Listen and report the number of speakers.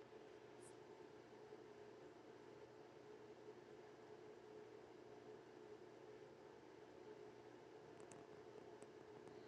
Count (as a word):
zero